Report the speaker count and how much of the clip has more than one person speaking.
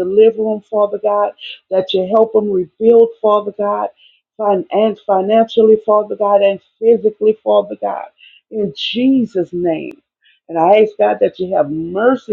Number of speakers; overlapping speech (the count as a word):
one, no overlap